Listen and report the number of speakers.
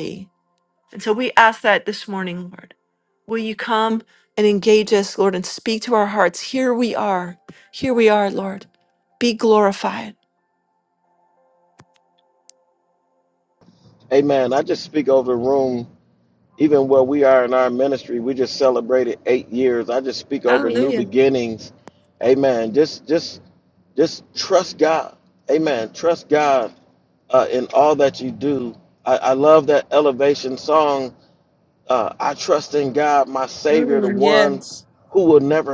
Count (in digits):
2